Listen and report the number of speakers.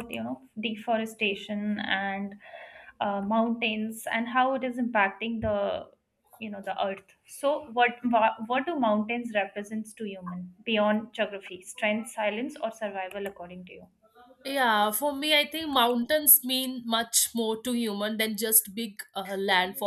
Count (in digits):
2